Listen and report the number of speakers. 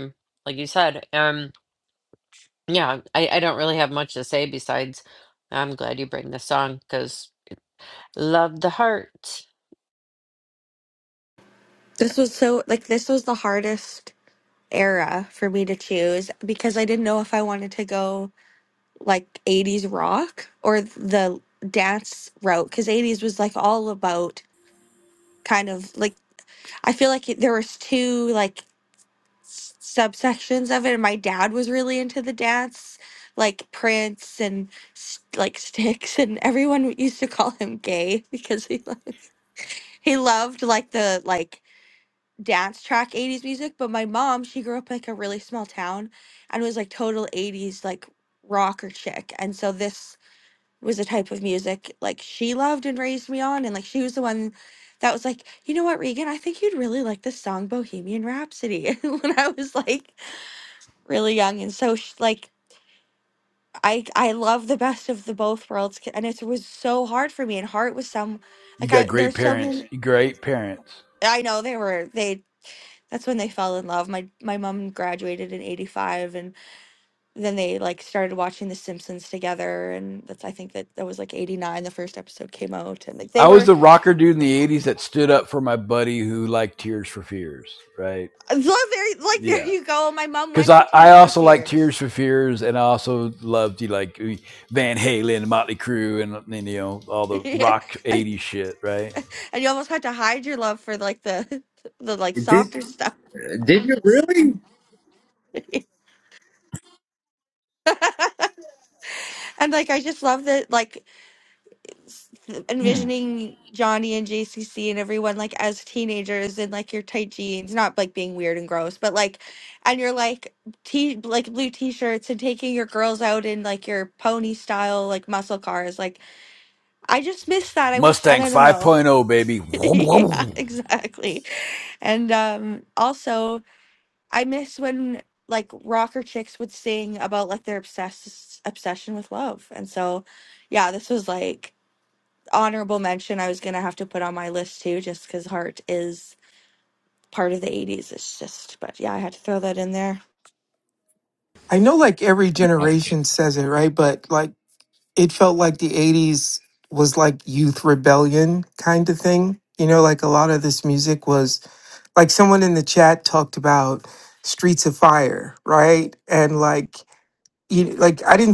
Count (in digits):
5